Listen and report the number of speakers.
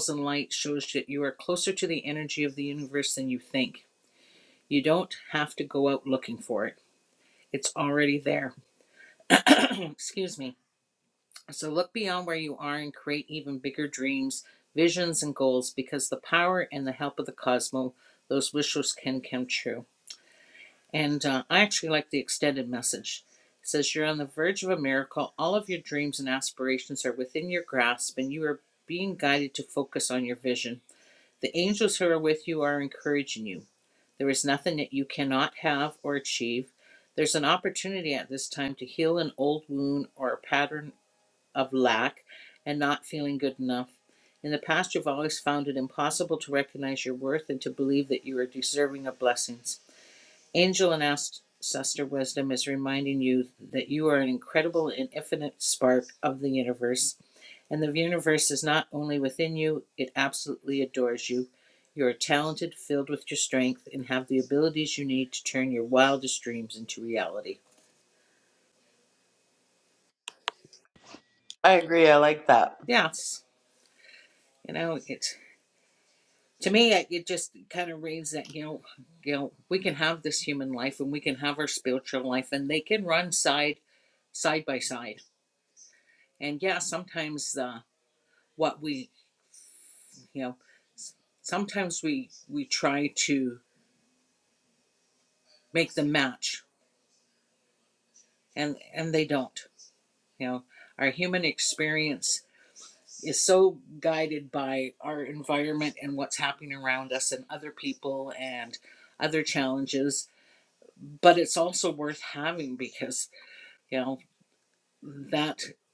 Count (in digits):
2